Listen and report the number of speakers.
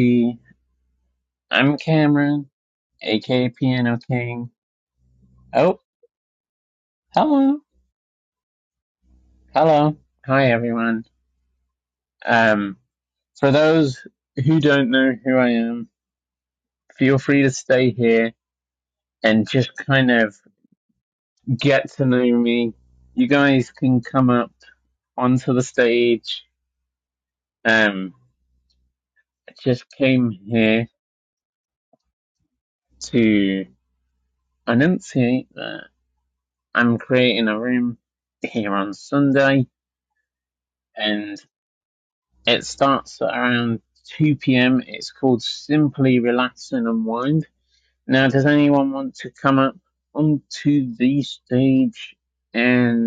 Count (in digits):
1